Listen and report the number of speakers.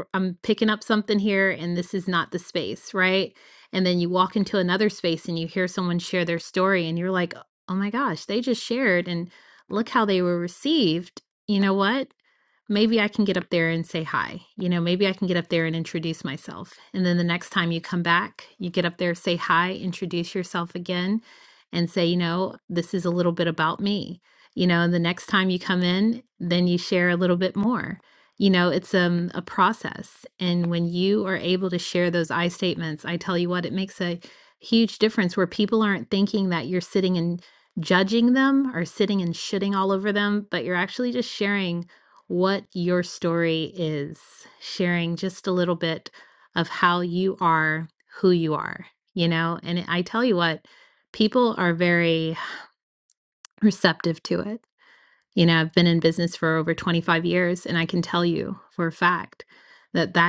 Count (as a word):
one